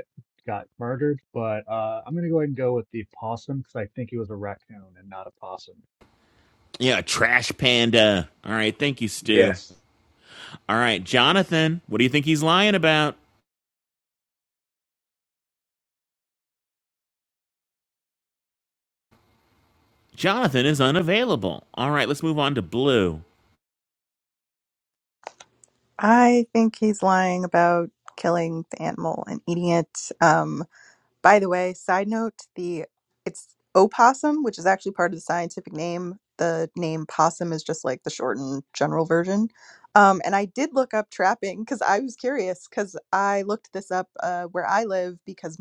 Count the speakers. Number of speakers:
3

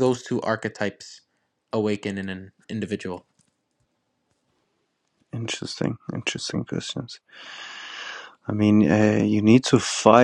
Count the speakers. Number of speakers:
2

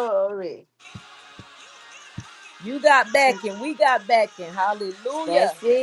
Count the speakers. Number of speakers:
2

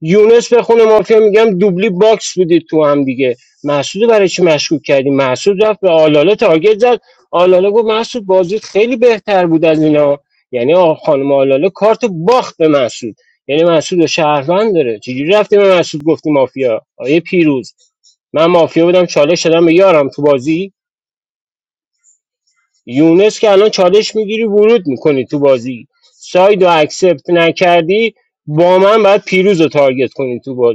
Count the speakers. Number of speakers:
1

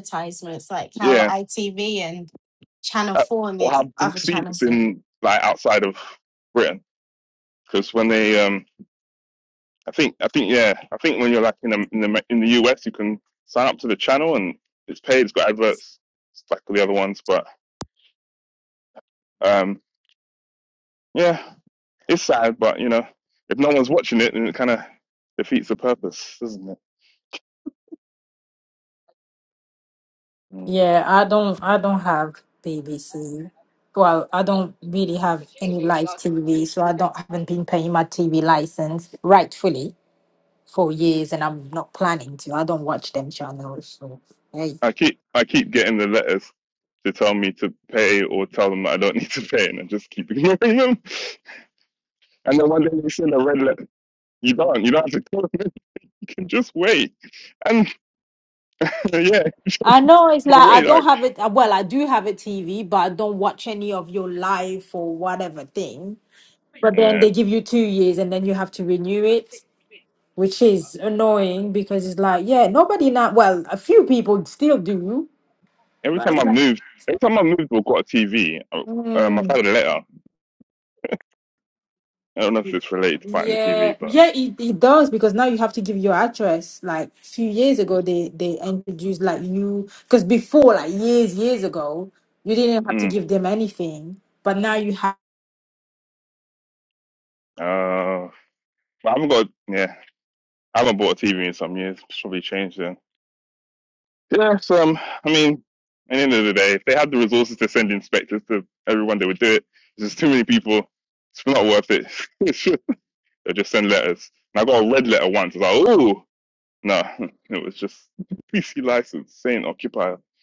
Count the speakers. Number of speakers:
3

